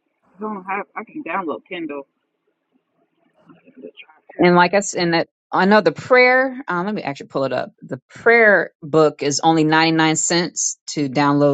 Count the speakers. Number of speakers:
2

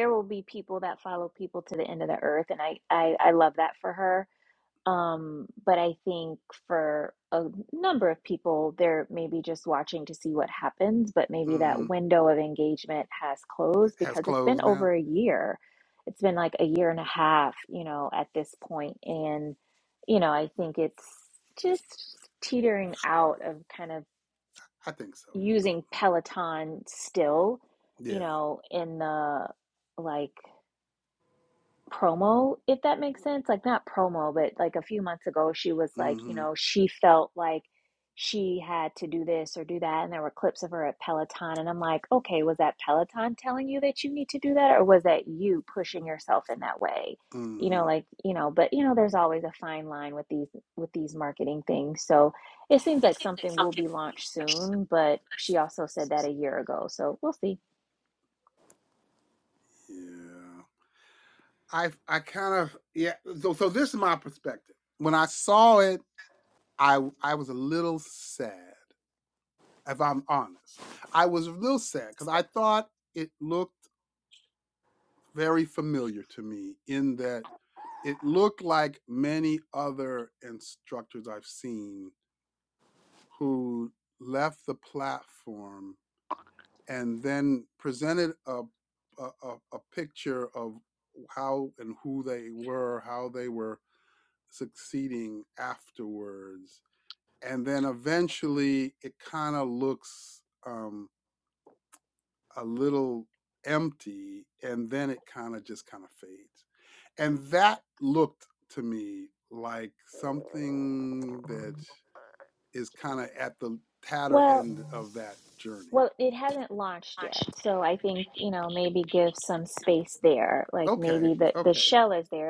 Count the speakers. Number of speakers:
2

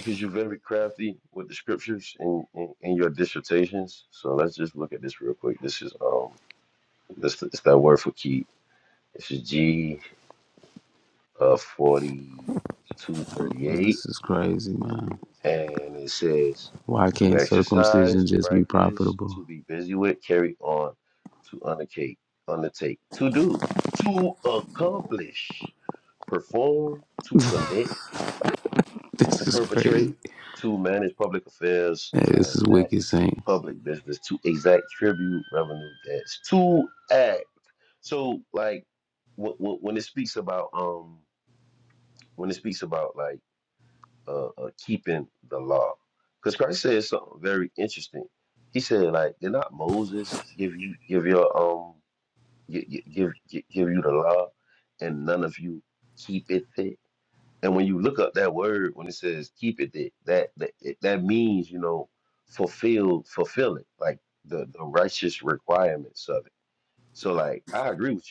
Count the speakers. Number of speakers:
2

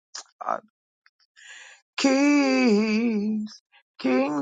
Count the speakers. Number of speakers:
1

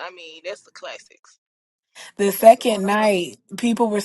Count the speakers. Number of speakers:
2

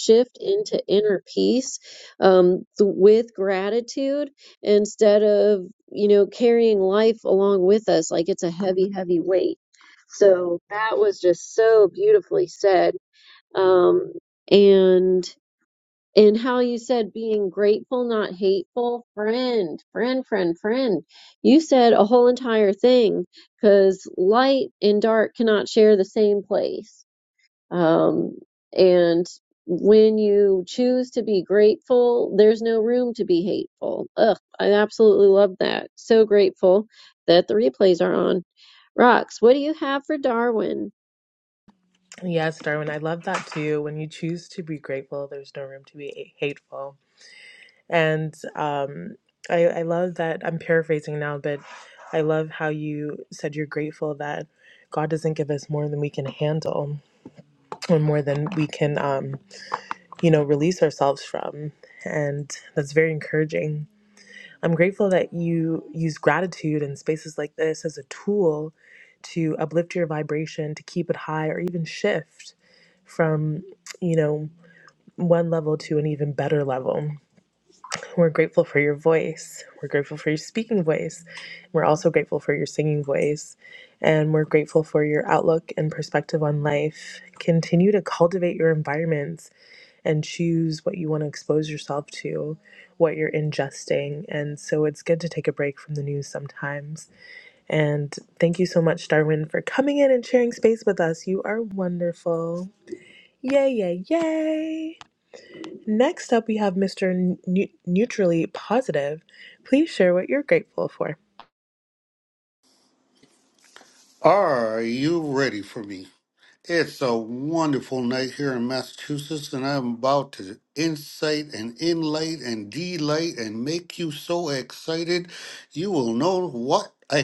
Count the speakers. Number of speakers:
3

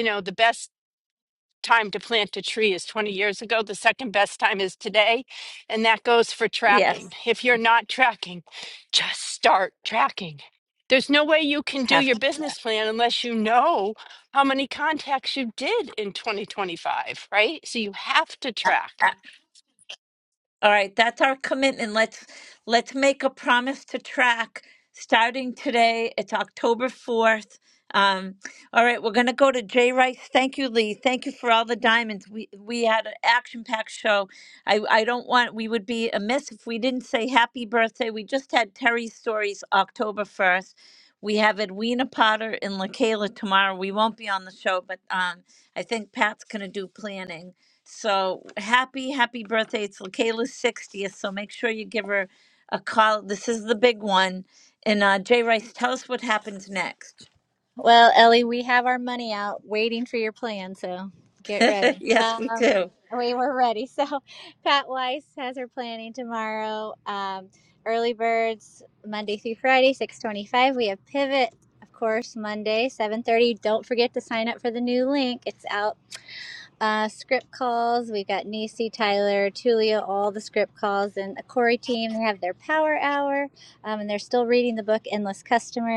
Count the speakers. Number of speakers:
3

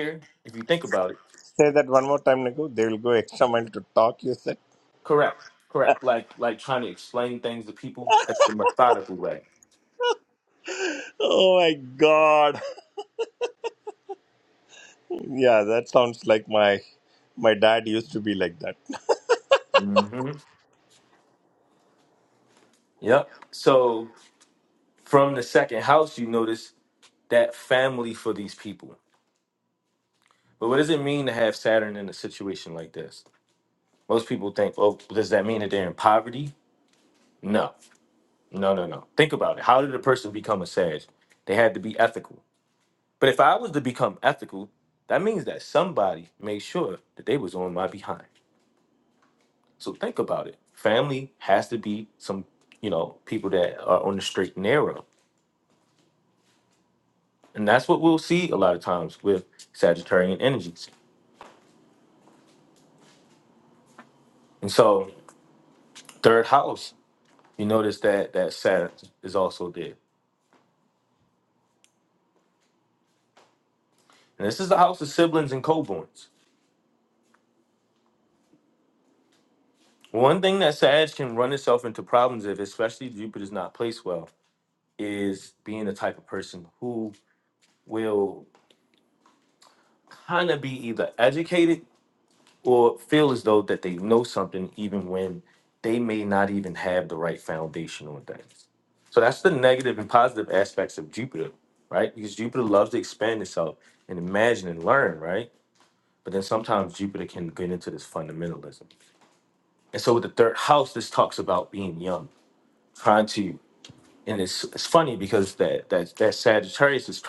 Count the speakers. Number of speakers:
2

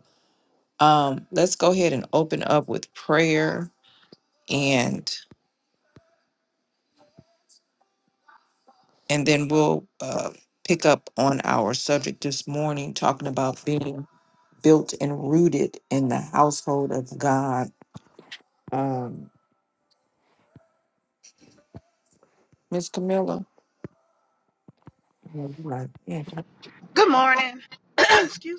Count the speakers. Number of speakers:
2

